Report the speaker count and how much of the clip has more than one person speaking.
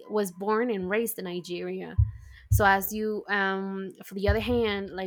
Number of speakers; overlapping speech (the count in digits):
1, no overlap